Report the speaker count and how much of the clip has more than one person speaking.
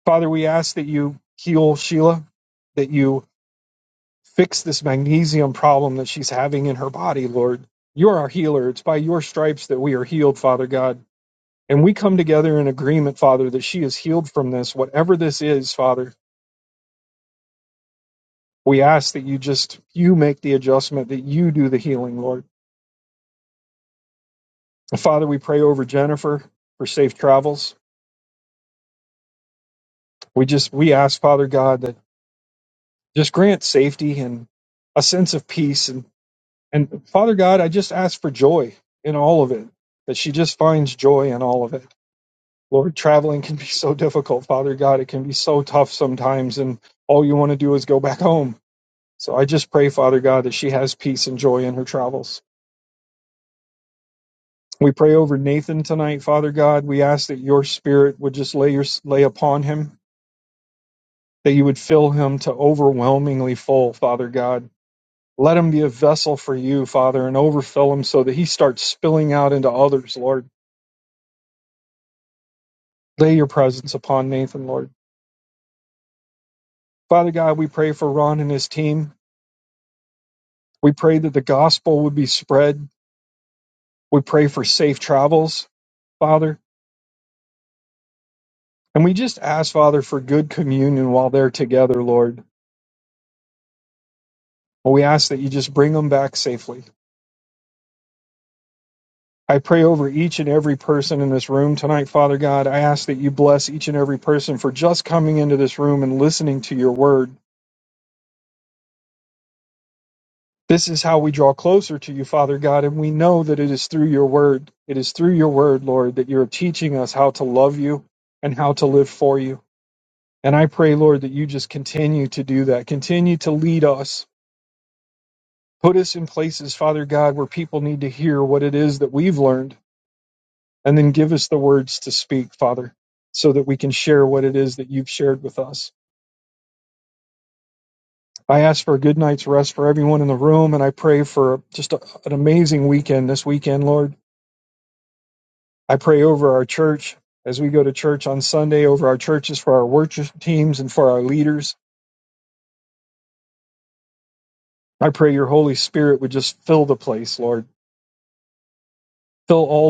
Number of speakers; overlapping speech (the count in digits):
1, no overlap